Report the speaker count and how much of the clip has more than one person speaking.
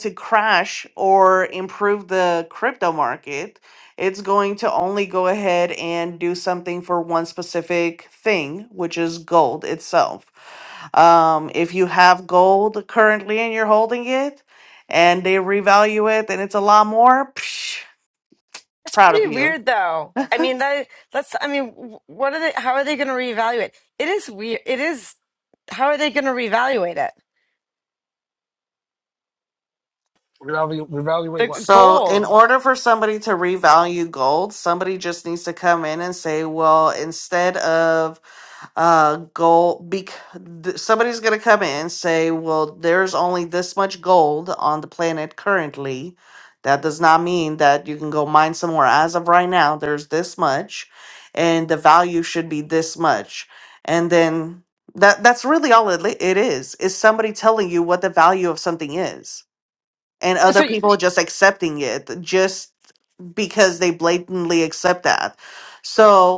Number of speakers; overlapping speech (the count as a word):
three, about 2%